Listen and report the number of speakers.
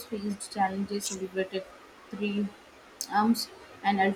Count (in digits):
1